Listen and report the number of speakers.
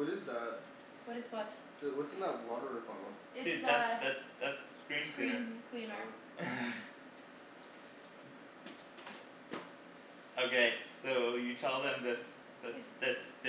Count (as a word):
three